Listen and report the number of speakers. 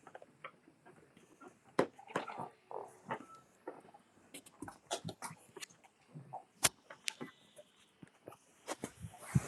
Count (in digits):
0